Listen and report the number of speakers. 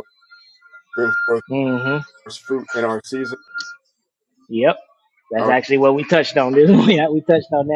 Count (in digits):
2